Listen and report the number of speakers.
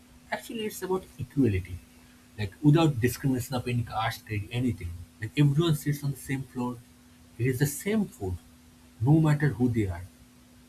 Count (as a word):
one